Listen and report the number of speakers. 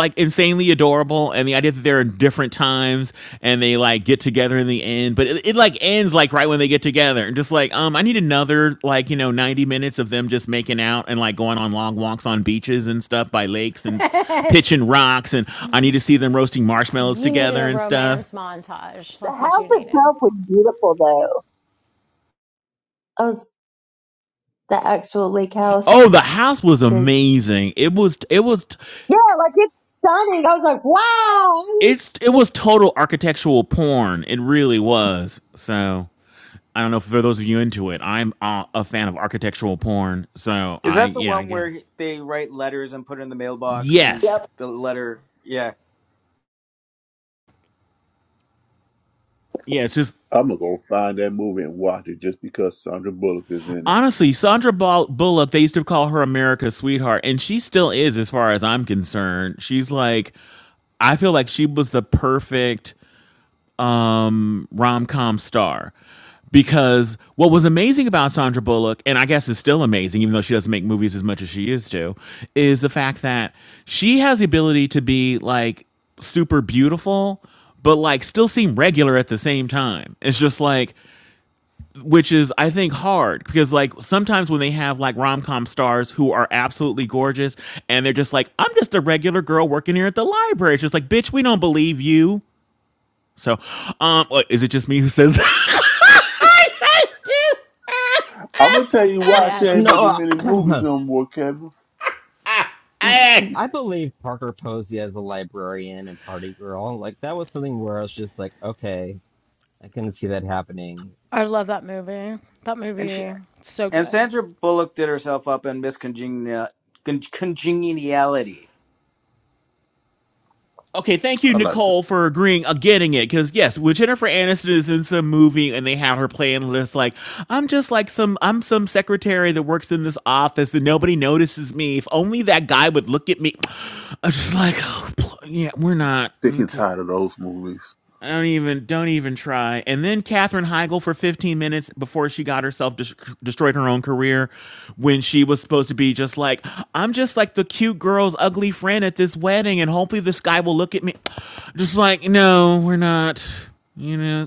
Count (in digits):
6